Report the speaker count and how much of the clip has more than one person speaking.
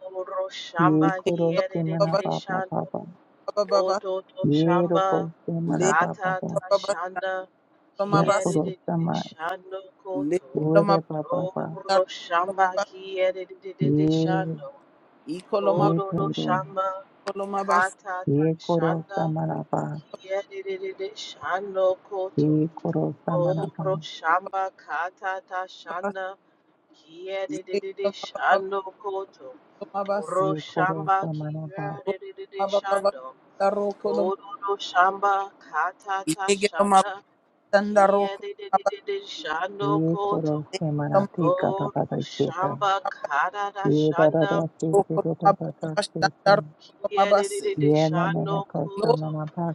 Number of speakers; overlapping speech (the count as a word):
three, about 40%